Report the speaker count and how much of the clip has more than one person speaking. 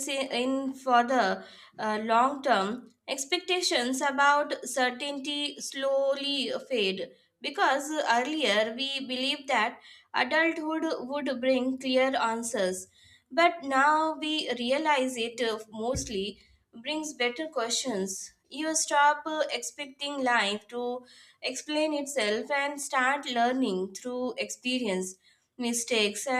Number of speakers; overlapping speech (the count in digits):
1, no overlap